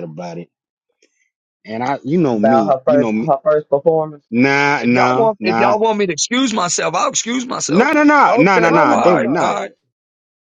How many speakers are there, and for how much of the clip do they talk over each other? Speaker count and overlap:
3, about 34%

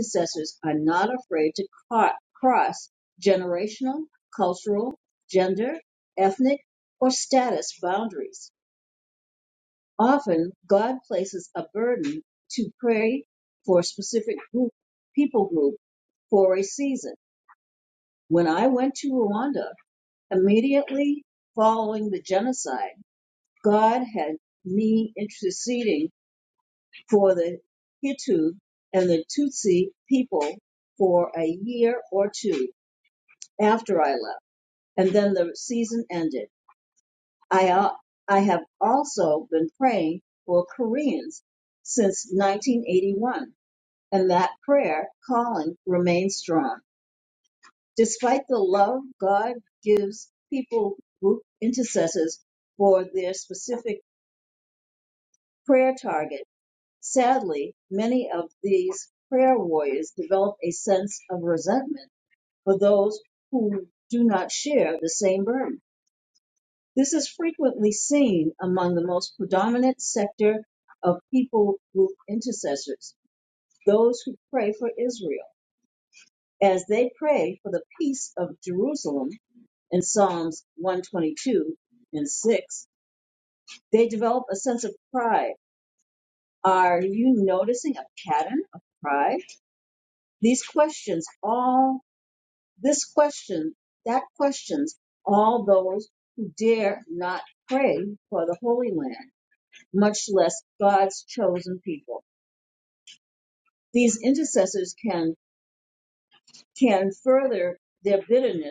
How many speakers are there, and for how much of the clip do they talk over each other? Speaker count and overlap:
1, no overlap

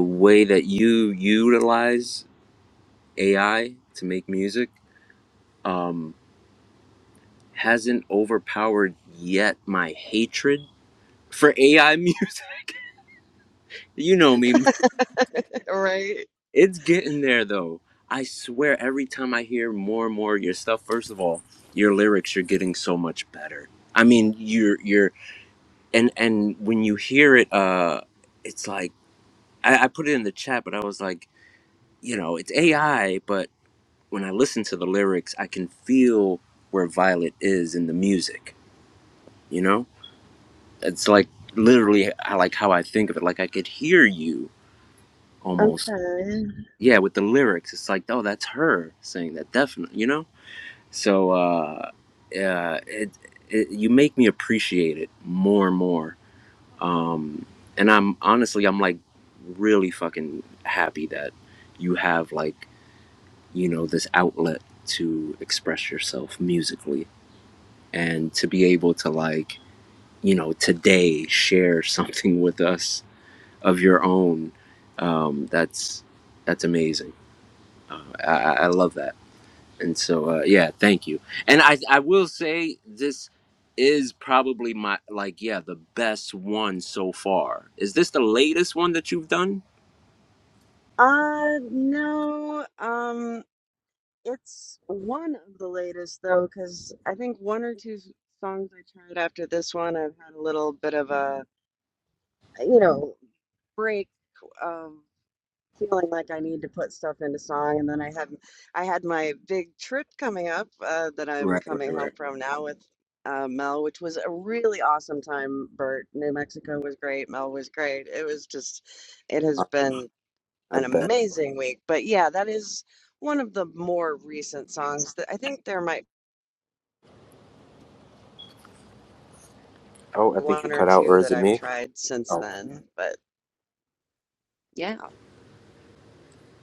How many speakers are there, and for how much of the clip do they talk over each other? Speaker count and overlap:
2, about 2%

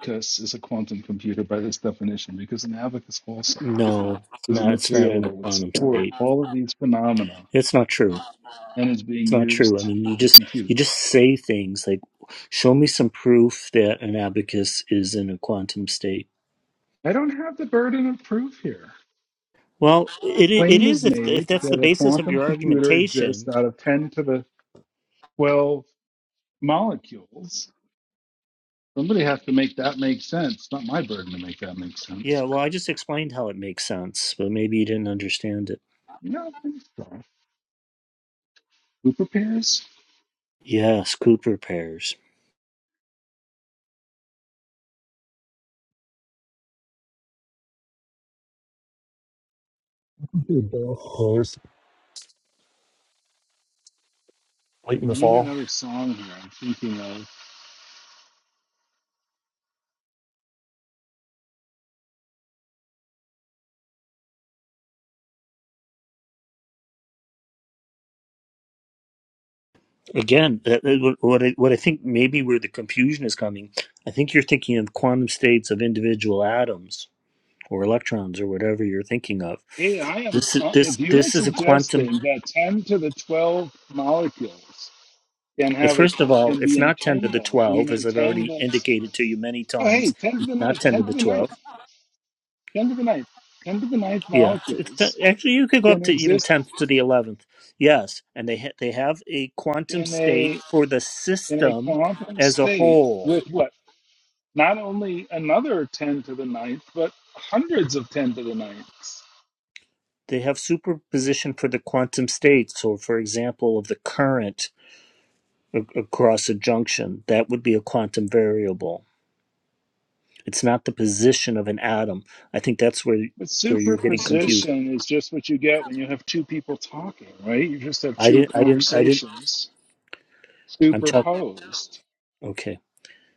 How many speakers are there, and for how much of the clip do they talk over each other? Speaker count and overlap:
3, about 14%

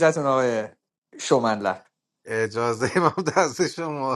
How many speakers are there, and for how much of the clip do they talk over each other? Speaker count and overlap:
2, no overlap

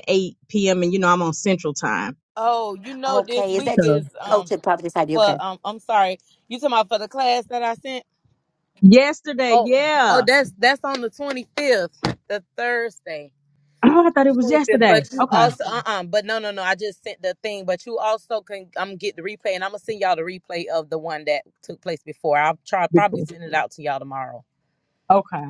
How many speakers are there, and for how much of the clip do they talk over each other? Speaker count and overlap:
3, about 13%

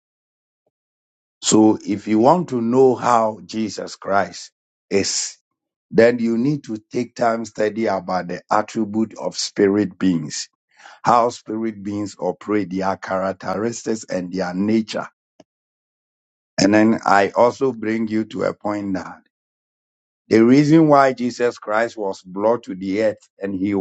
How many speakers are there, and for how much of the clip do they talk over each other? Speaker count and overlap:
1, no overlap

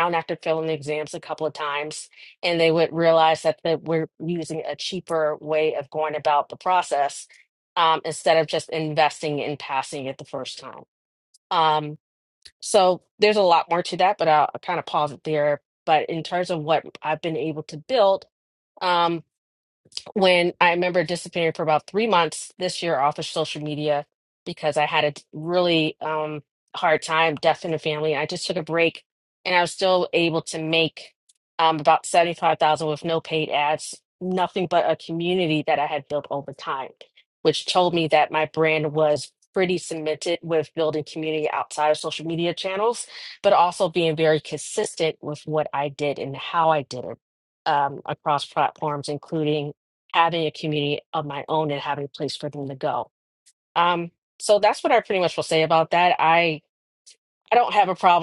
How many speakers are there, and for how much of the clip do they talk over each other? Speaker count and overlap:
1, no overlap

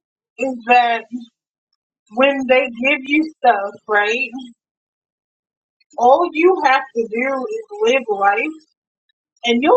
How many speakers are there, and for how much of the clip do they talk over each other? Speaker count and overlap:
1, no overlap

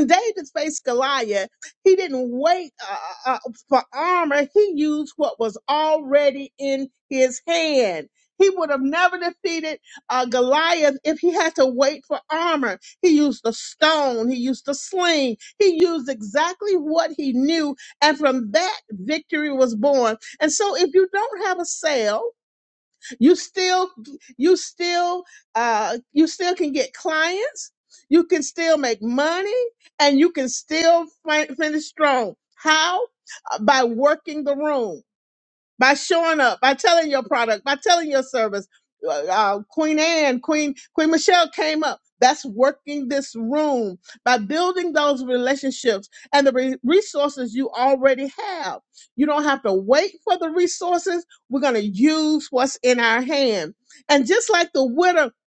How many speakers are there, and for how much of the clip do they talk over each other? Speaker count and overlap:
1, no overlap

